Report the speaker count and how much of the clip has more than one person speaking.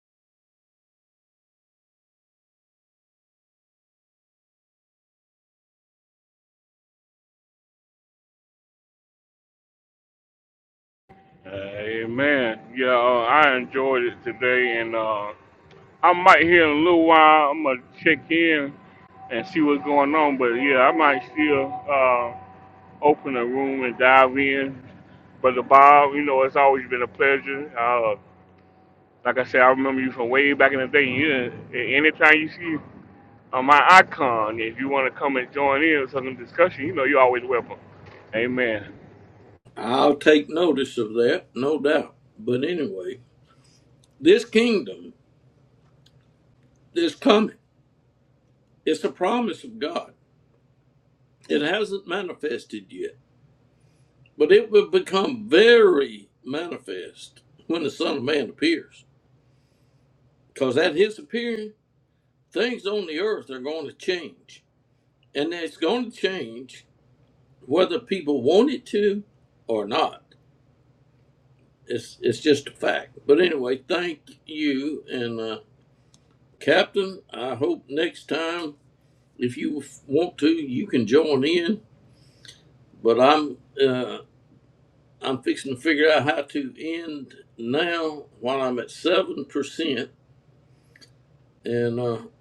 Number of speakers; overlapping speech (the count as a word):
two, no overlap